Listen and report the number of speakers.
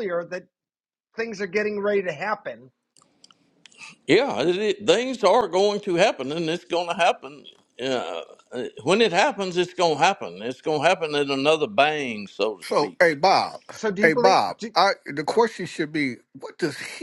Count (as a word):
three